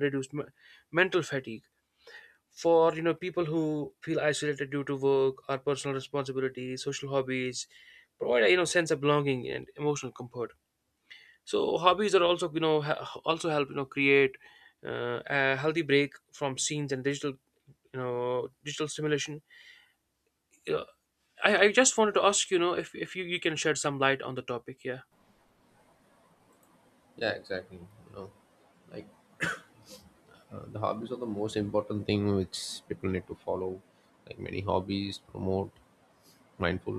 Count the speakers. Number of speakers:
2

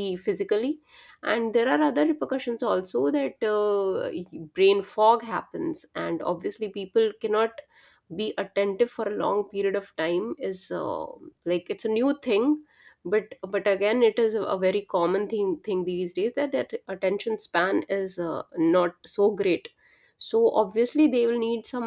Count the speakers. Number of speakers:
1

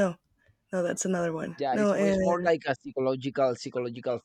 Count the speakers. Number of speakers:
2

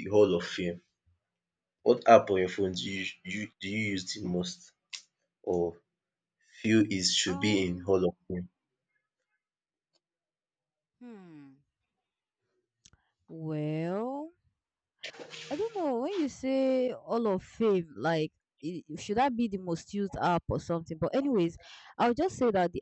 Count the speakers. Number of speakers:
2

